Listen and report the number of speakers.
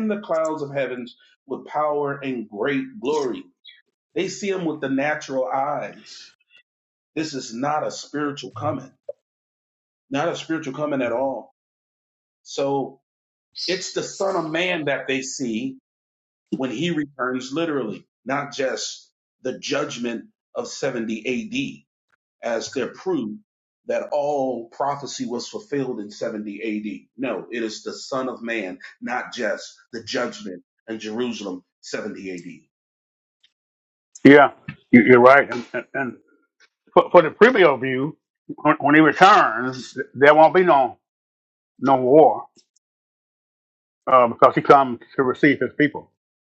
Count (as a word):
two